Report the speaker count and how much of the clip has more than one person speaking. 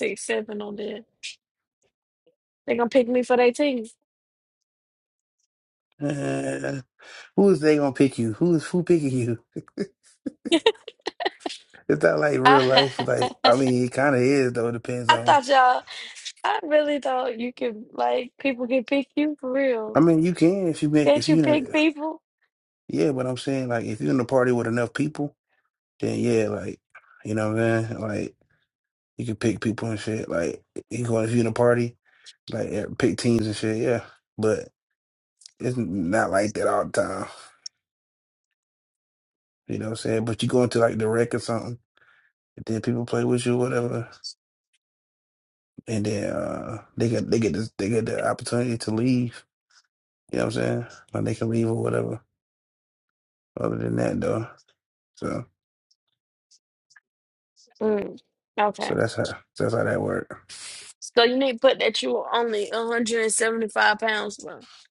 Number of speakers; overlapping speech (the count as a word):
two, about 2%